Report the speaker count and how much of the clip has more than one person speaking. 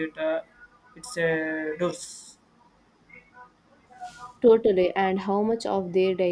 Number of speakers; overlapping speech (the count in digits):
2, no overlap